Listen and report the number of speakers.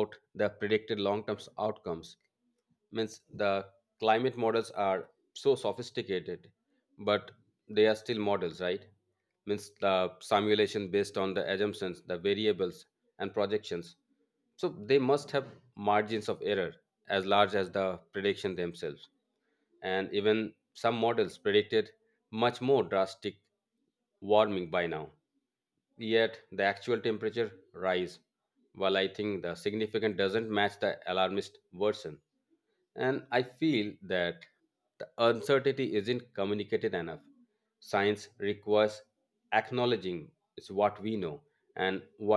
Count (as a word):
one